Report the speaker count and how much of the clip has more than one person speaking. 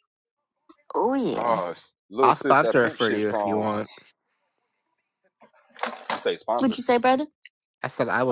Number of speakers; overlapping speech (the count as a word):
three, about 24%